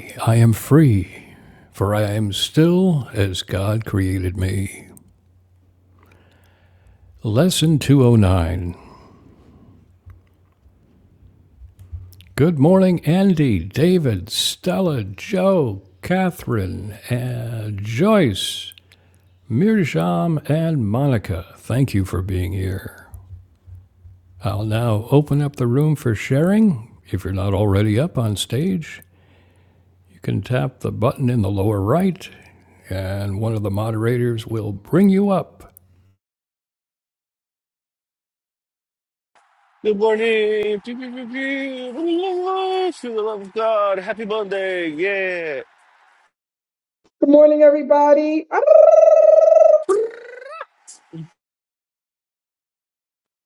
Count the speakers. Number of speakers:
three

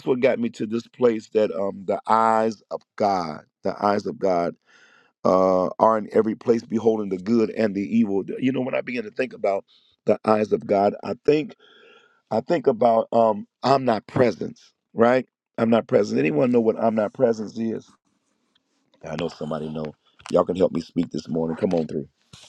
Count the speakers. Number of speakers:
one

